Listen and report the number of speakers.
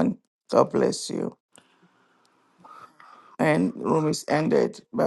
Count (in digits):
1